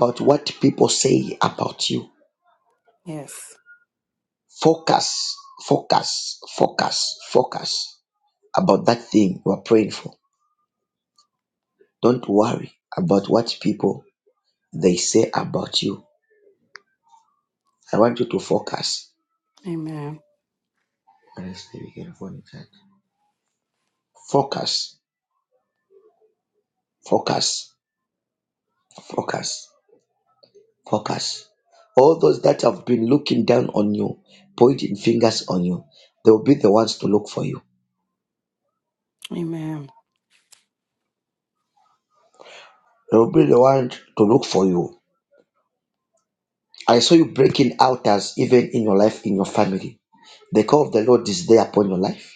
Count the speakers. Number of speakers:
2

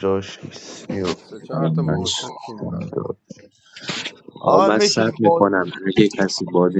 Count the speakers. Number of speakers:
3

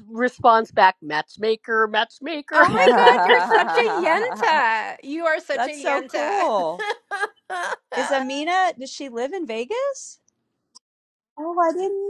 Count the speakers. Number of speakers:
3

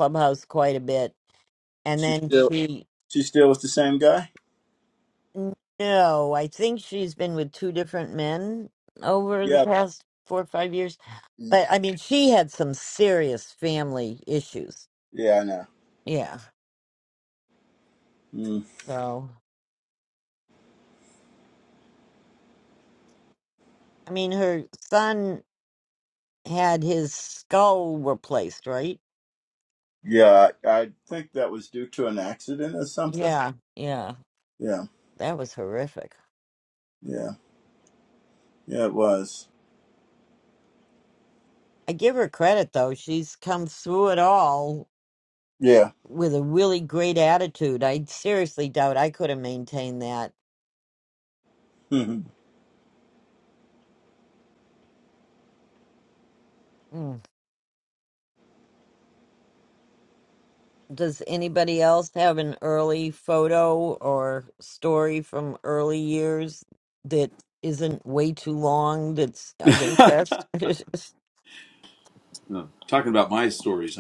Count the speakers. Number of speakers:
3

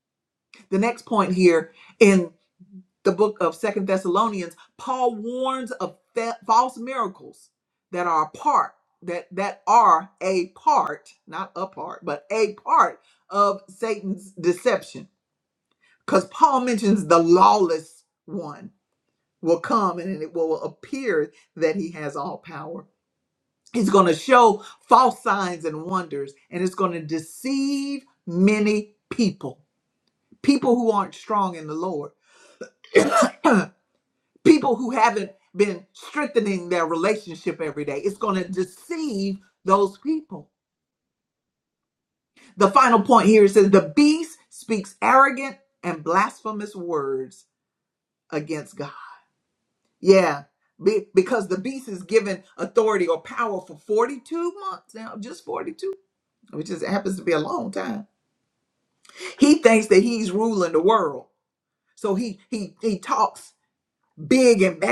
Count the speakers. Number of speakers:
1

